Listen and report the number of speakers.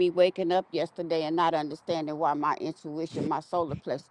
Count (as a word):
one